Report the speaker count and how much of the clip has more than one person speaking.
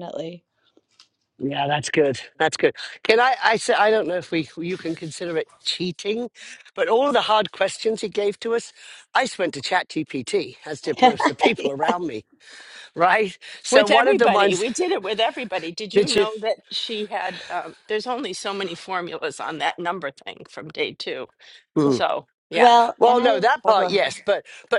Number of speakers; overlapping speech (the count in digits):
3, about 11%